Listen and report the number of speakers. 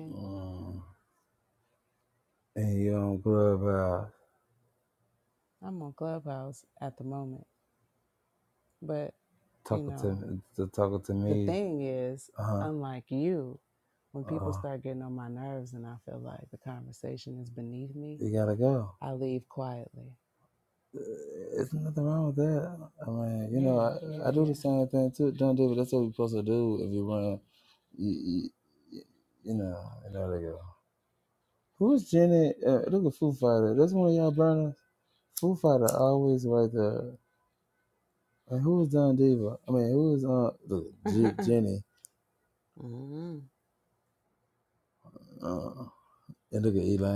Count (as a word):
two